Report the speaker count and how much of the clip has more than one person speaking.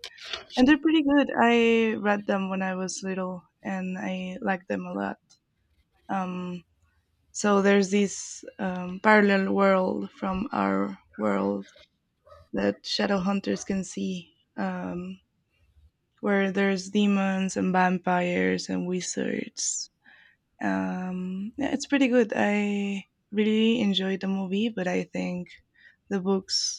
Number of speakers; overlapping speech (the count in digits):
1, no overlap